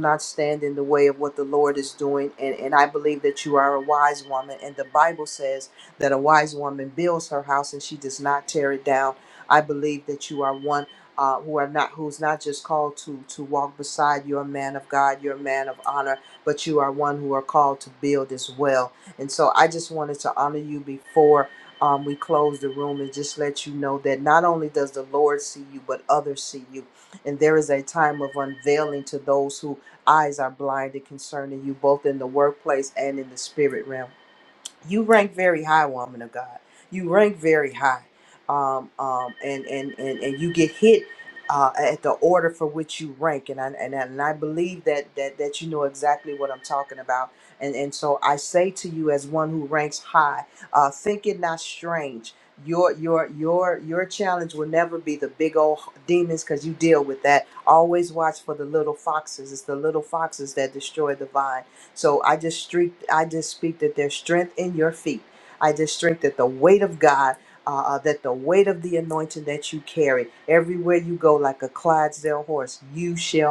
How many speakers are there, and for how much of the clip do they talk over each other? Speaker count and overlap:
1, no overlap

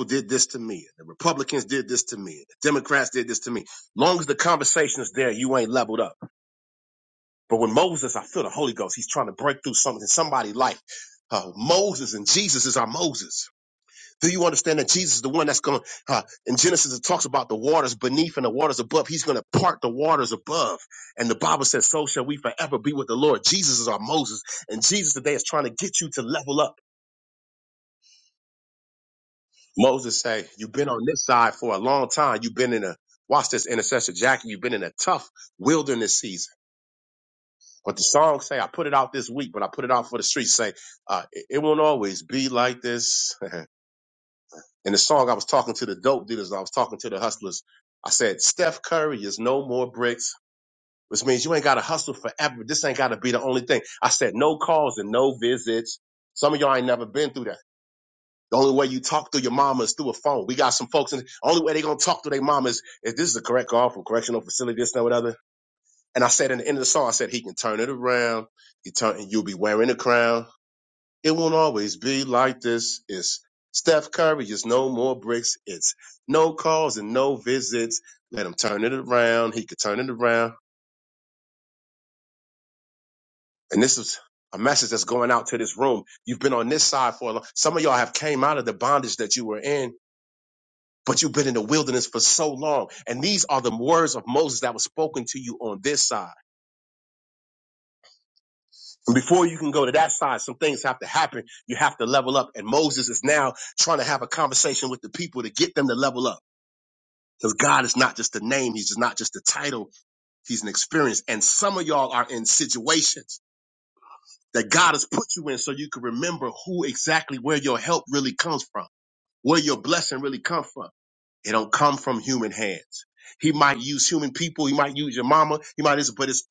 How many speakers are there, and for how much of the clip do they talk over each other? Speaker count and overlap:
1, no overlap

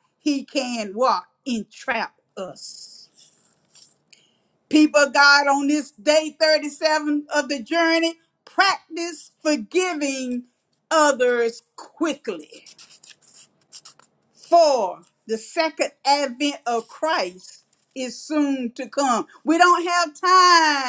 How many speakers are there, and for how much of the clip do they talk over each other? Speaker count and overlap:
1, no overlap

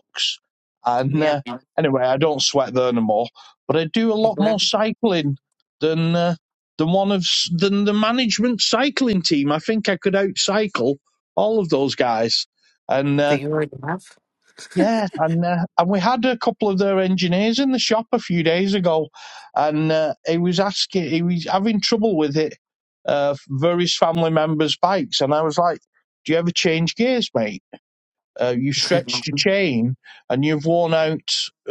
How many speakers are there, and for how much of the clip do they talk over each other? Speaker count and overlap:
2, about 2%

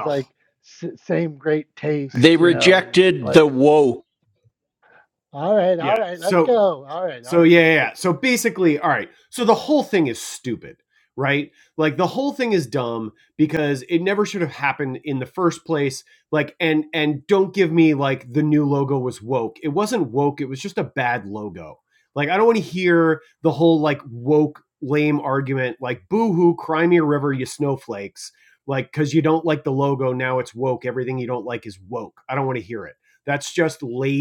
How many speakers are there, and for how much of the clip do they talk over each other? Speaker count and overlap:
3, about 7%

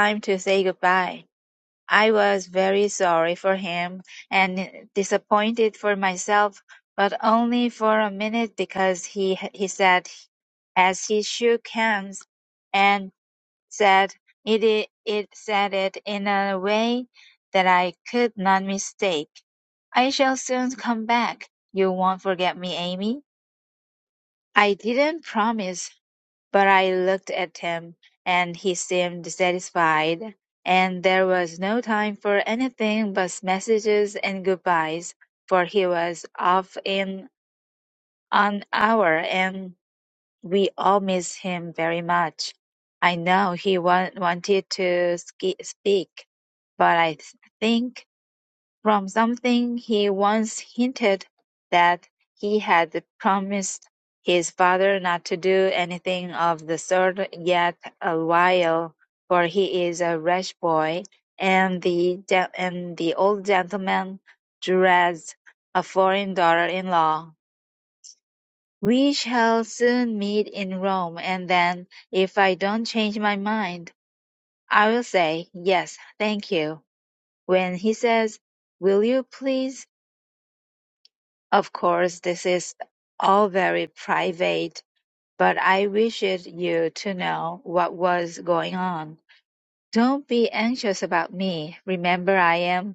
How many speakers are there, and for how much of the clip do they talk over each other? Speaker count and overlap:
1, no overlap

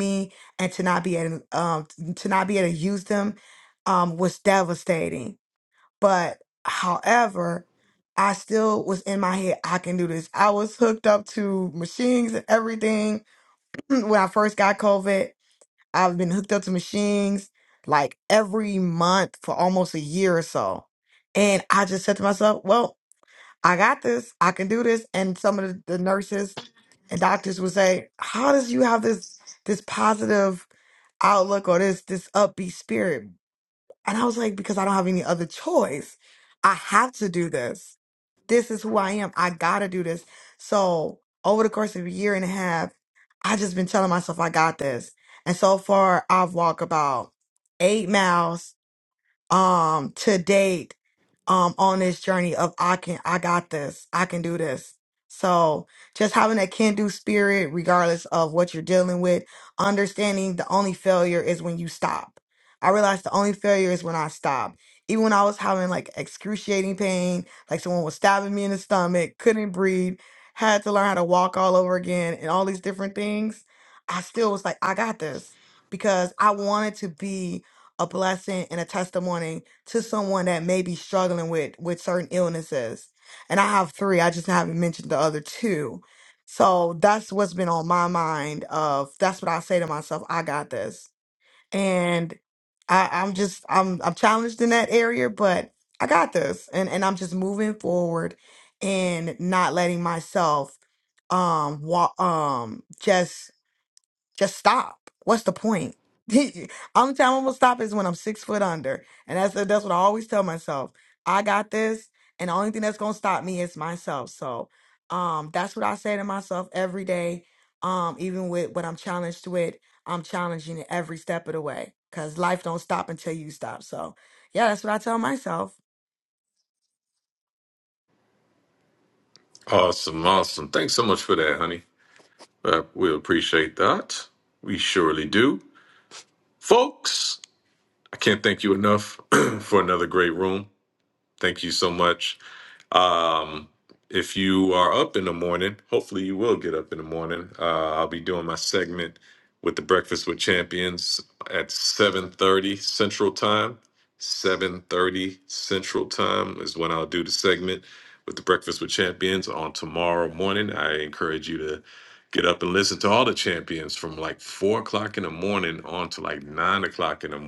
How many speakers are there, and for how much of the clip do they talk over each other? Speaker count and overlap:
2, no overlap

